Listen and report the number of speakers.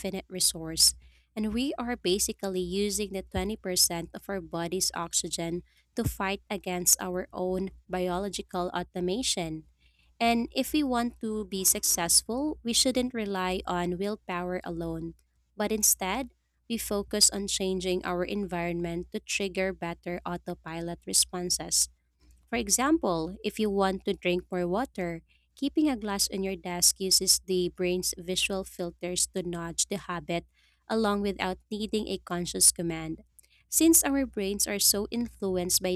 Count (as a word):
one